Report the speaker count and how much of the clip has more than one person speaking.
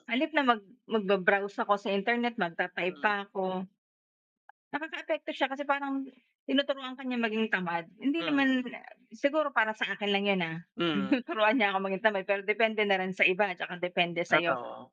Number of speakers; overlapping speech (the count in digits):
2, about 6%